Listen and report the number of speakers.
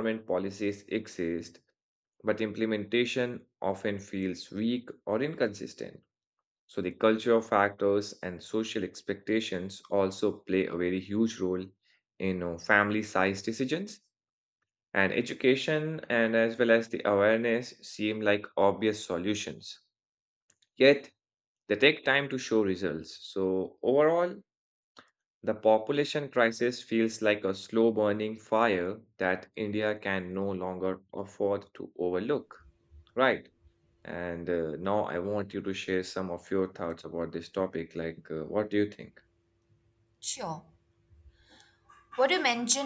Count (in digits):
2